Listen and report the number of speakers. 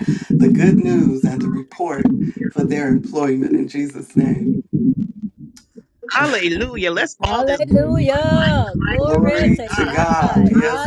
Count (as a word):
three